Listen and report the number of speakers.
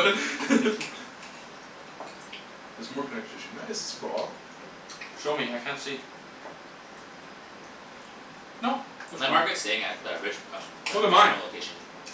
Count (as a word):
three